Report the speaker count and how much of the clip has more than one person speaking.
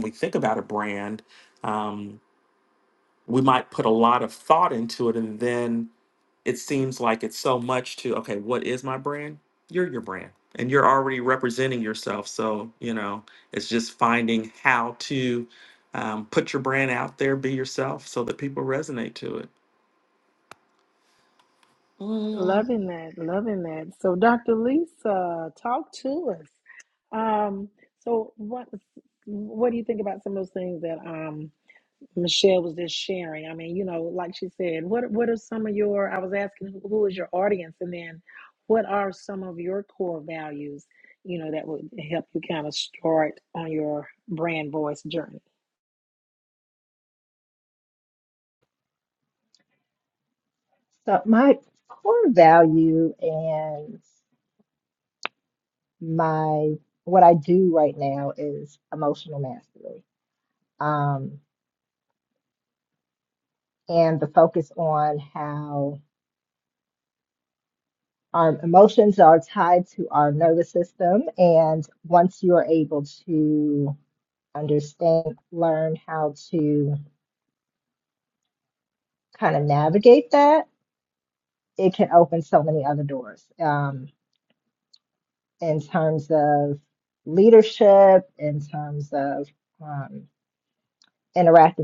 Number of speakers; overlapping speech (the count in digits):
3, under 1%